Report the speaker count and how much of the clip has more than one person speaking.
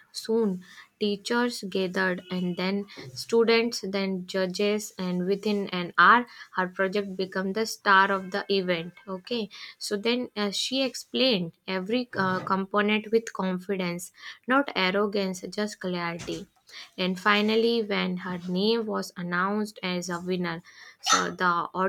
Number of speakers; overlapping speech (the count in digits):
1, no overlap